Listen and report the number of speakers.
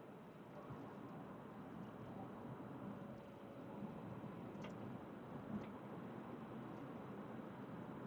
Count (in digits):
0